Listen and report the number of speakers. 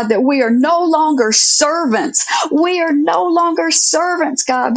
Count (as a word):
one